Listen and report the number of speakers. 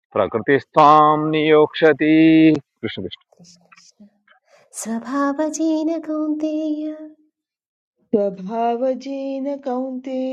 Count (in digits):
3